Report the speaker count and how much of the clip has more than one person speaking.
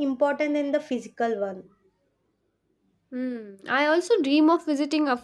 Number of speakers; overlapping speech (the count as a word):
two, no overlap